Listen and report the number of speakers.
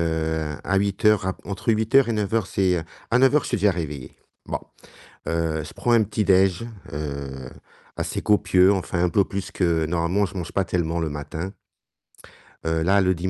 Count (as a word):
one